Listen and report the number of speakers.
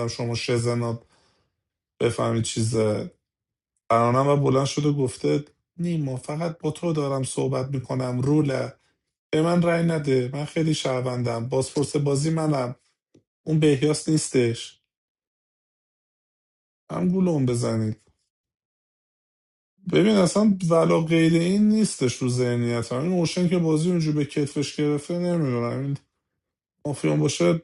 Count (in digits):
1